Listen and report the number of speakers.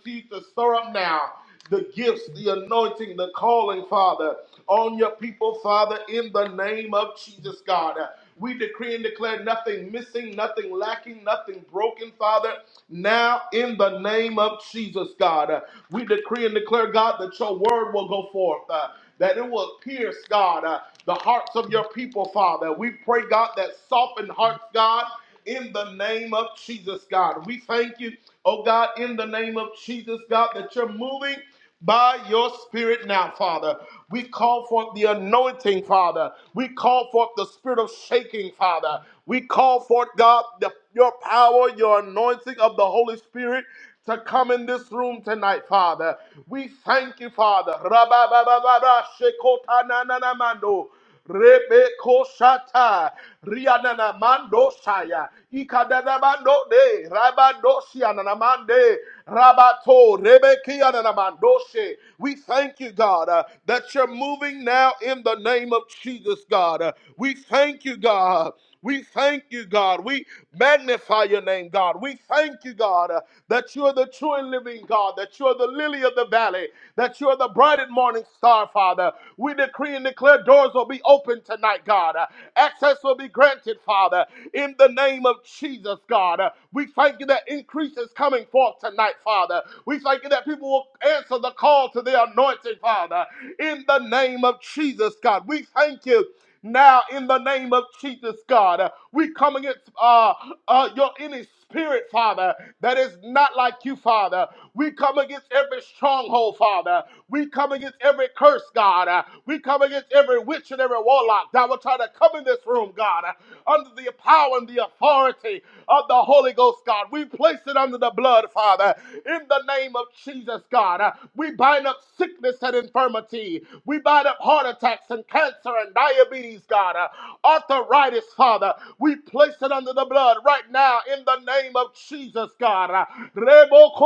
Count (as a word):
one